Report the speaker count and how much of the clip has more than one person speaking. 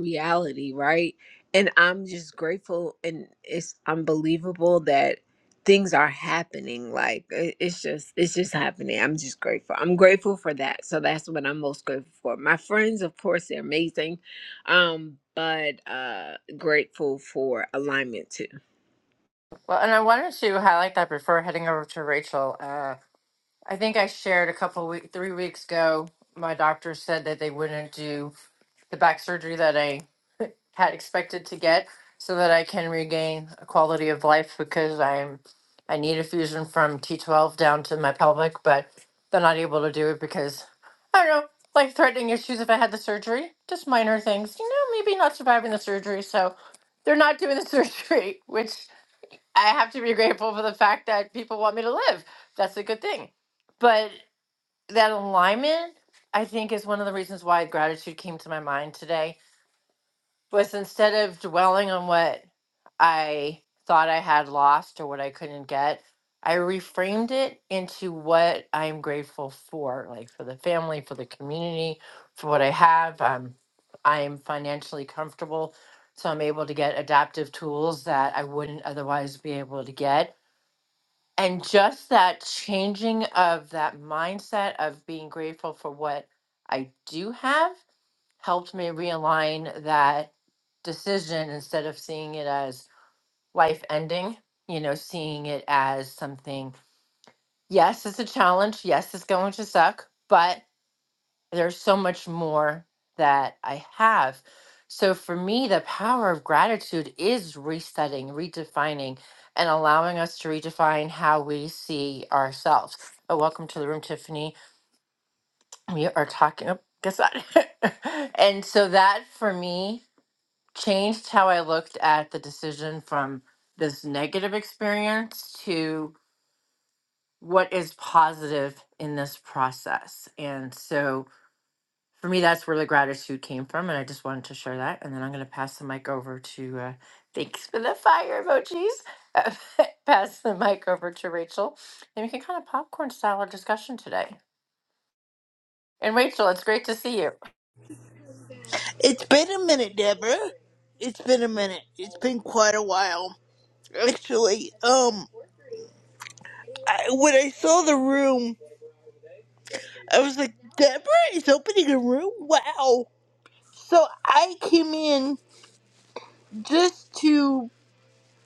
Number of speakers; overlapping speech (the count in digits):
3, no overlap